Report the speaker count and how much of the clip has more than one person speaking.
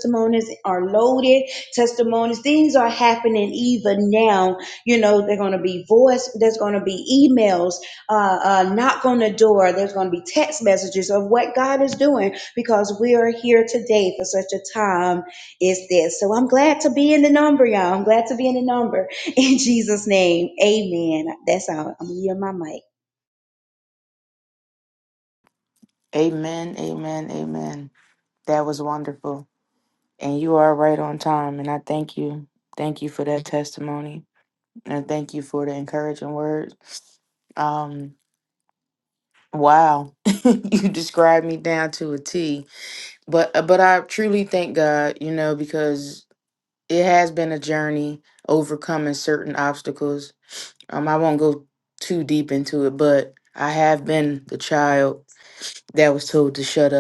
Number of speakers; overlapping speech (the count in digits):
2, no overlap